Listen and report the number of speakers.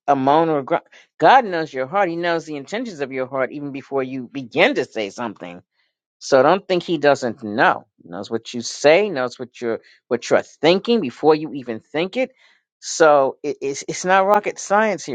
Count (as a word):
one